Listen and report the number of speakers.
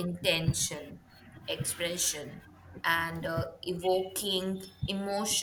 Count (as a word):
one